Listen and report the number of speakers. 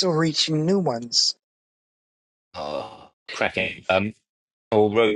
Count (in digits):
2